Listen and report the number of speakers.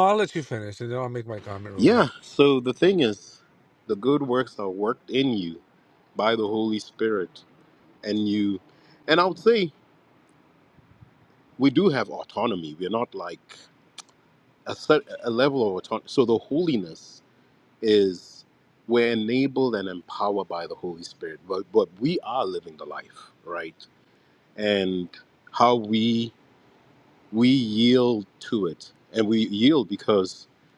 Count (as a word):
two